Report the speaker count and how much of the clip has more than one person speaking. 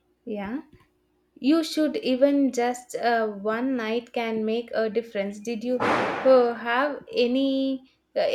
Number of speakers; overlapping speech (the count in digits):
1, no overlap